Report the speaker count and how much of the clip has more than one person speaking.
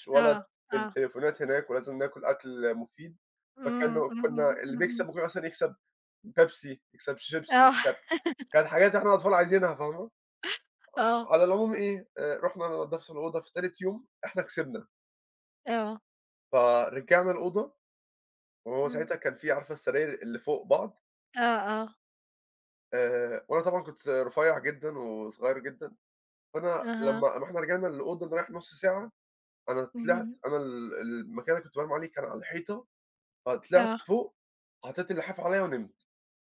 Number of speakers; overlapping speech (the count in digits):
2, about 11%